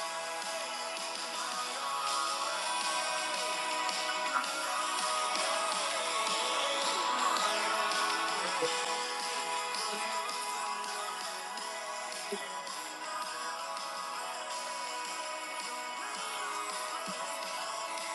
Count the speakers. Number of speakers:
zero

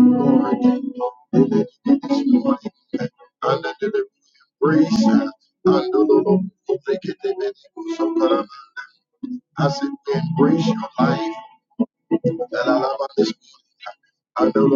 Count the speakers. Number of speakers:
one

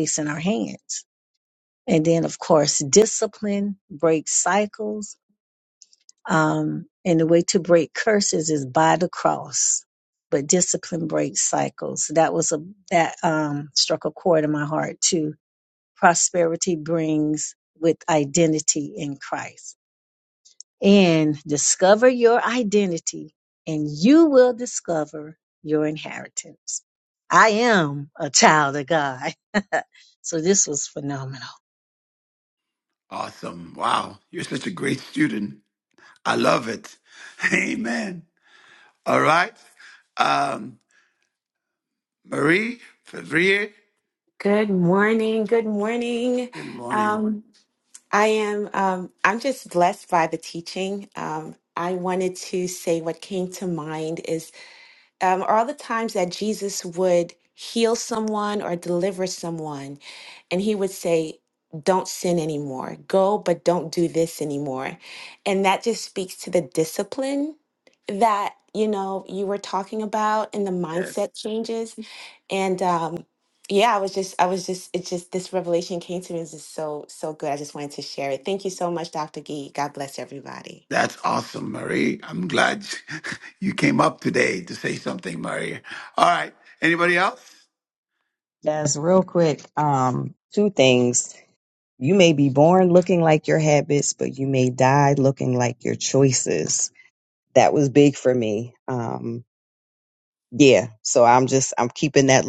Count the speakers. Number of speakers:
four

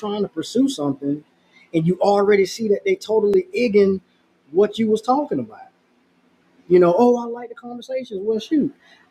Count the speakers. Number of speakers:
one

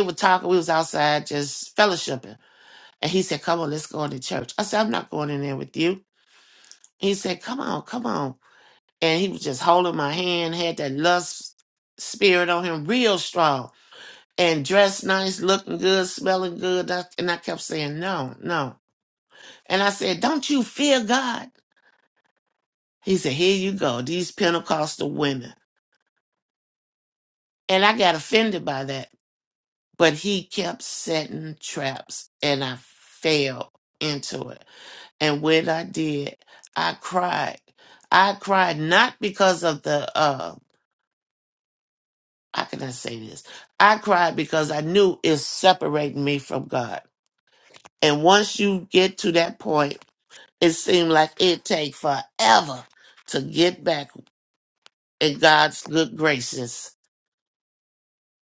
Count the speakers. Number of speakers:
one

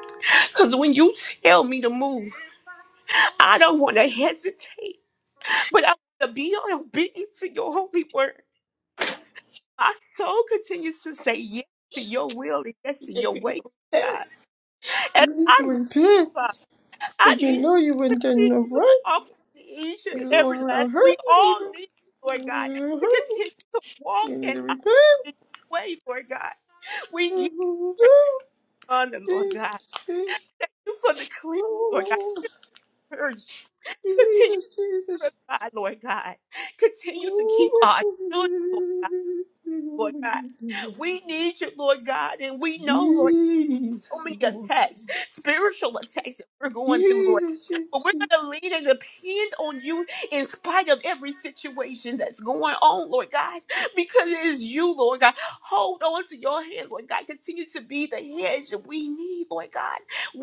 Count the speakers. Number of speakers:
two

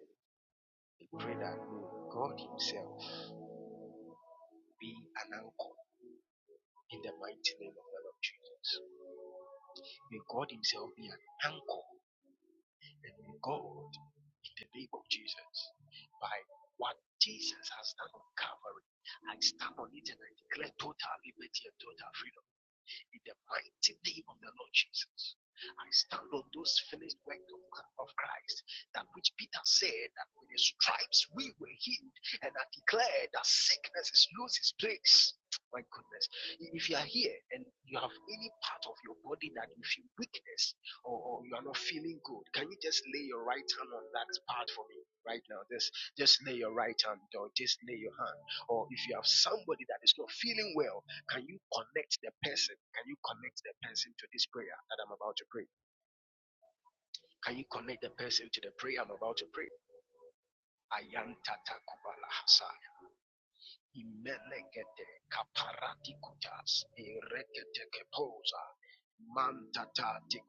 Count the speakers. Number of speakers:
one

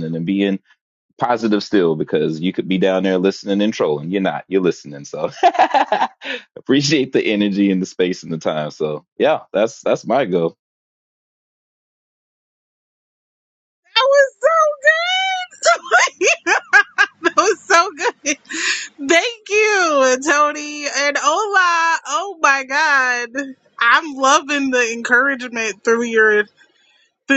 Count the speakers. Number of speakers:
two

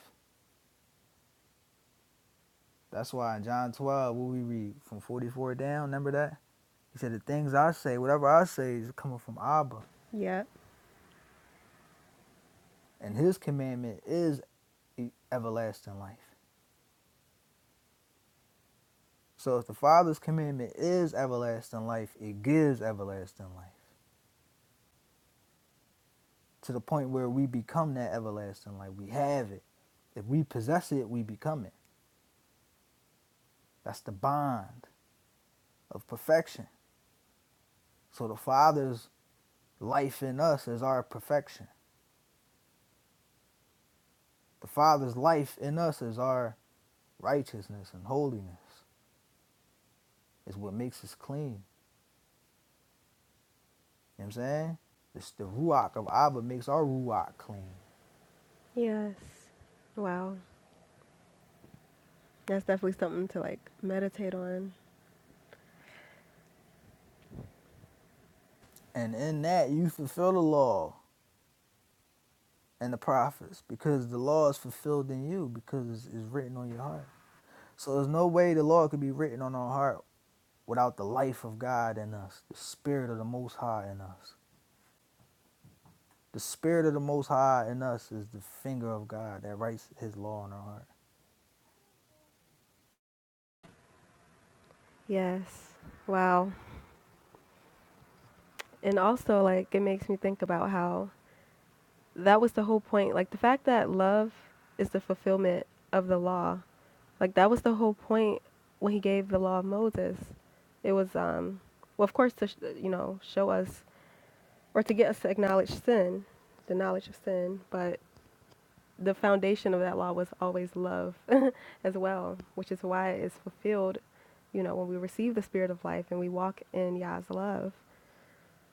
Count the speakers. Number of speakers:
two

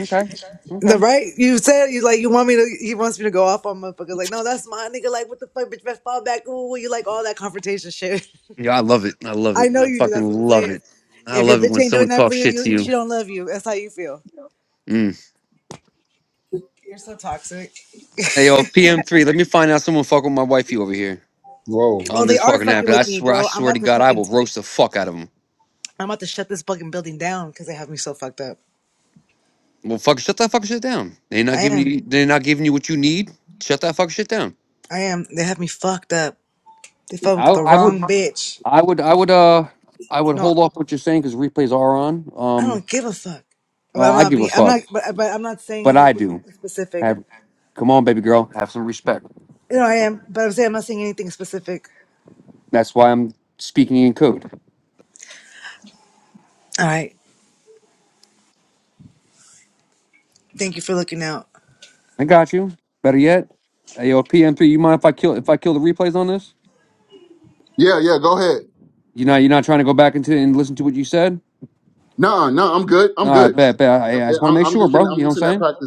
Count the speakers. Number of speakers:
three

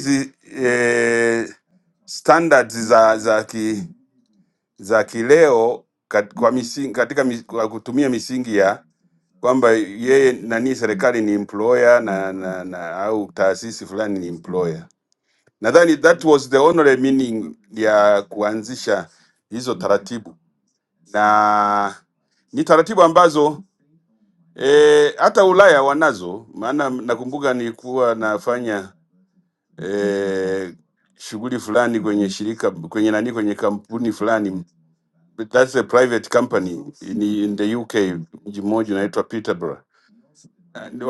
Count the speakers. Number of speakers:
one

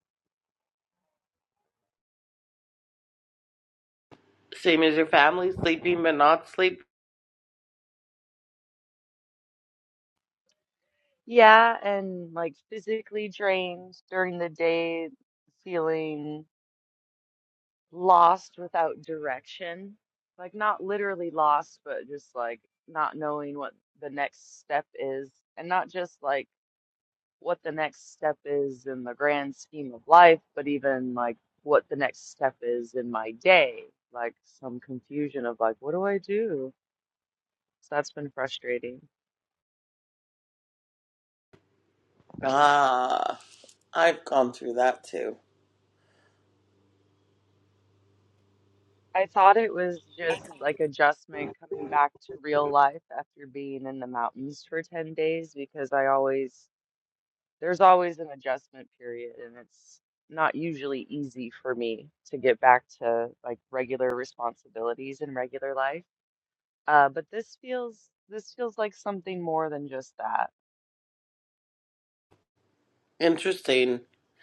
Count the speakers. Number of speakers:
two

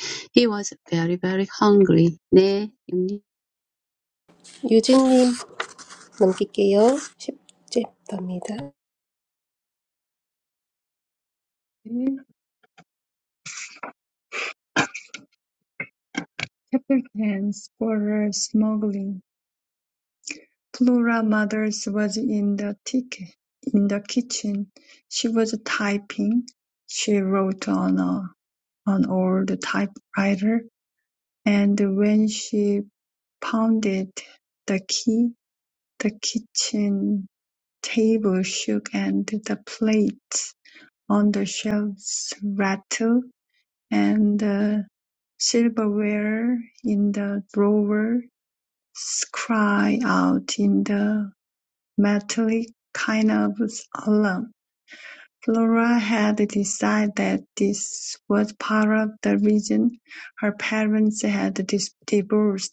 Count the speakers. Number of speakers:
three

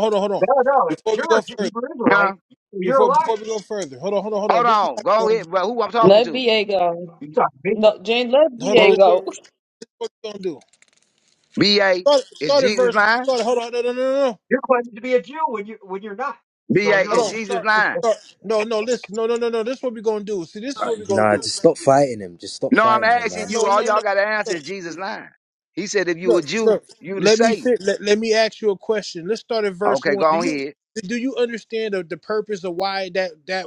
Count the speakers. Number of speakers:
five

